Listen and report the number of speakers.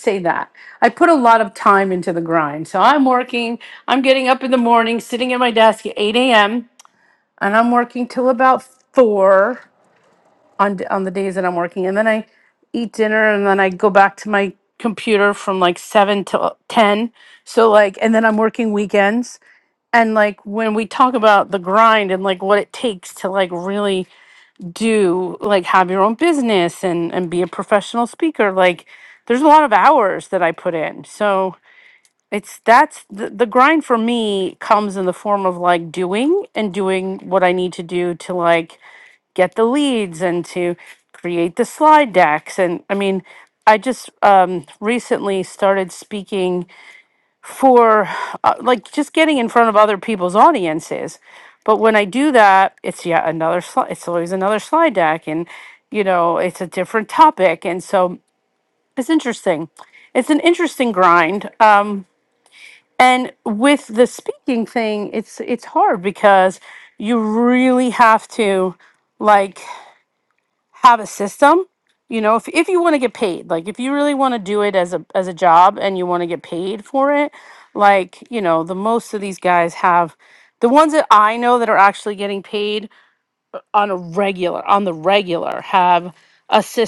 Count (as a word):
one